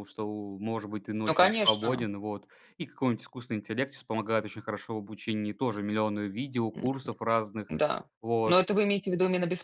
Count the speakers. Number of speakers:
2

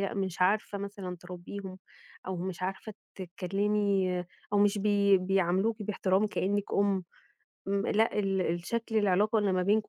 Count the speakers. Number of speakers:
1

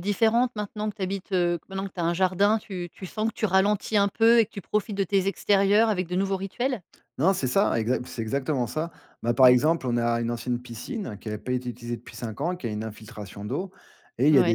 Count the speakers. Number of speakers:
2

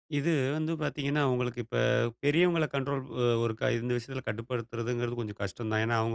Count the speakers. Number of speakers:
1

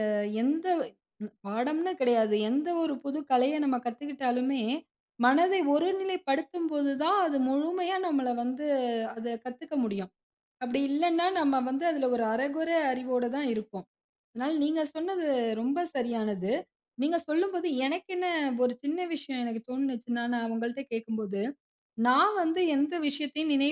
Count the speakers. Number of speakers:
1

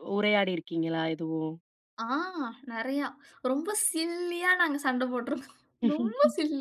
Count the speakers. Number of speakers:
2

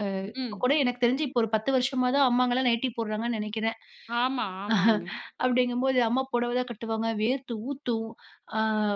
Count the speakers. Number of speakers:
2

